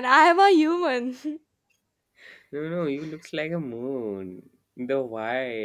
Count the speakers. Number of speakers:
2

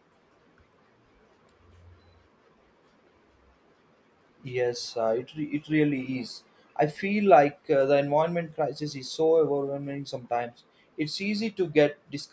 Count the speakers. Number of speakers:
1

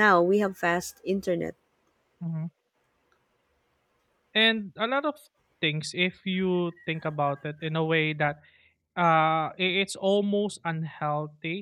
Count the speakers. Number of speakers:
2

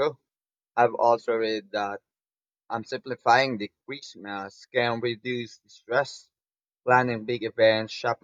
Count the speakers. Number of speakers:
1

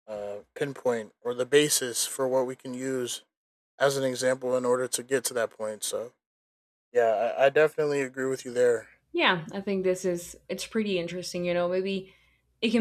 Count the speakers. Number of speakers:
2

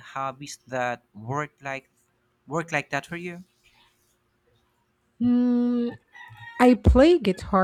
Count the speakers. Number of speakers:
2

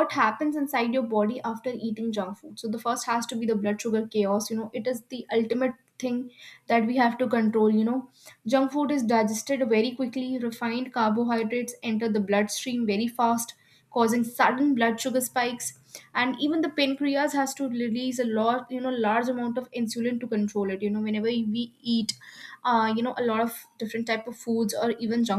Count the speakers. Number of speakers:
1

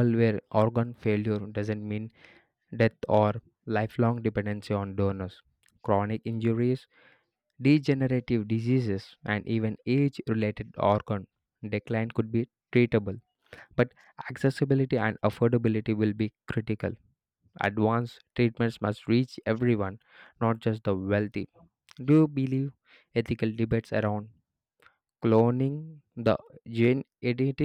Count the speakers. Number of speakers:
1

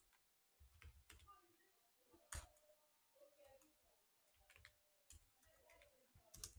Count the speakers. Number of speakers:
0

